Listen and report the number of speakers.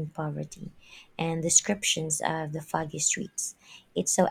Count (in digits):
1